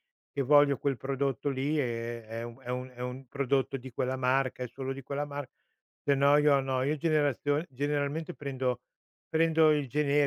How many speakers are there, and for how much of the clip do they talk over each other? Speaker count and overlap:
one, no overlap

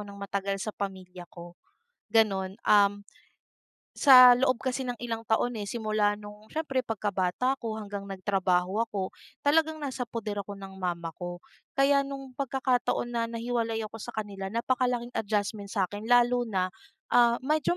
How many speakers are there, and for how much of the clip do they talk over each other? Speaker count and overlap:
one, no overlap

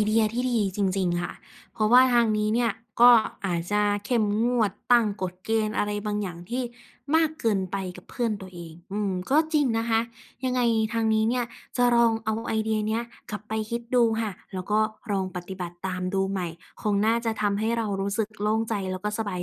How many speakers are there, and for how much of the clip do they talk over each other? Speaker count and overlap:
one, no overlap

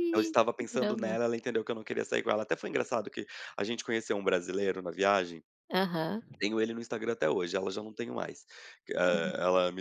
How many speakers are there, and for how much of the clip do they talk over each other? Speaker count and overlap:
two, about 11%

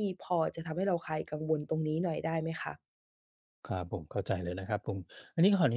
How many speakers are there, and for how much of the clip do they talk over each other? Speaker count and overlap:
two, no overlap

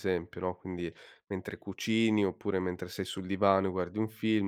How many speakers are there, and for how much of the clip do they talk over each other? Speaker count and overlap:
one, no overlap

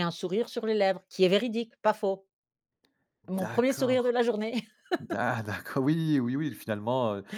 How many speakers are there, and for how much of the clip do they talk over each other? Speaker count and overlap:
two, about 10%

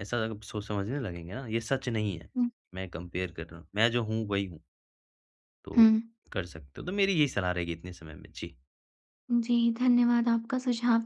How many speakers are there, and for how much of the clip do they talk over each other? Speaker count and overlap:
two, about 1%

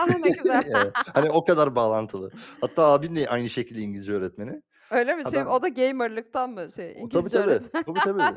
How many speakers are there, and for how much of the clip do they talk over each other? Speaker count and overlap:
two, about 16%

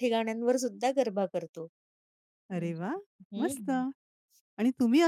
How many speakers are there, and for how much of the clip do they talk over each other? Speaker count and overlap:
two, about 8%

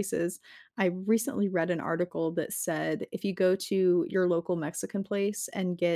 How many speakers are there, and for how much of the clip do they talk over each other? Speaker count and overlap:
one, no overlap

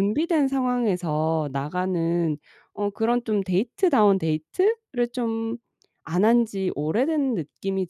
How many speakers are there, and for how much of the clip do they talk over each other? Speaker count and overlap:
one, no overlap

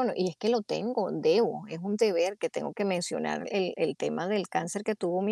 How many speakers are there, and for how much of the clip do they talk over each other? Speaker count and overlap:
one, no overlap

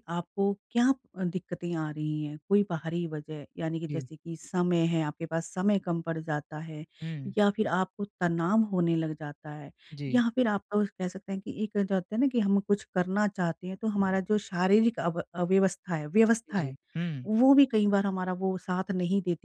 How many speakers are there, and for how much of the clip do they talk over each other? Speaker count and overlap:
two, about 2%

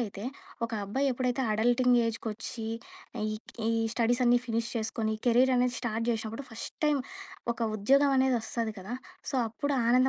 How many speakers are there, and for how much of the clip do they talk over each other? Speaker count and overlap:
one, no overlap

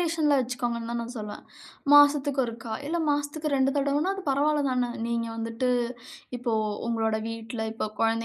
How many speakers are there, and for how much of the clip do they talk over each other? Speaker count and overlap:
one, no overlap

